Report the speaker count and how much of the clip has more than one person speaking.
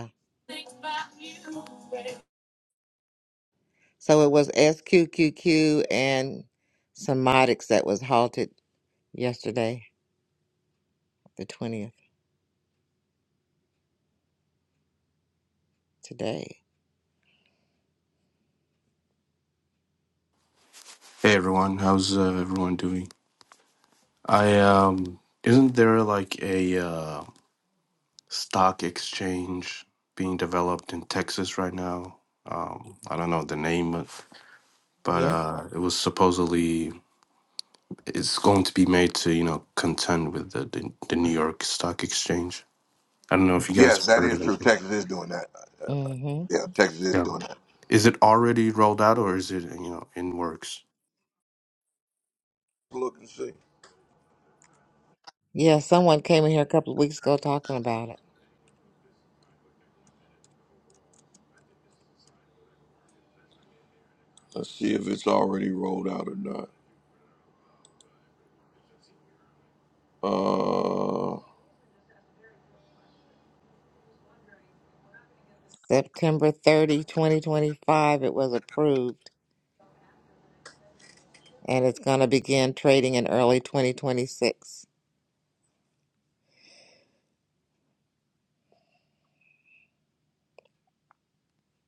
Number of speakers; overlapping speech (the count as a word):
three, about 1%